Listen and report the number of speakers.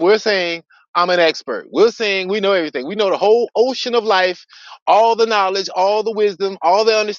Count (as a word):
one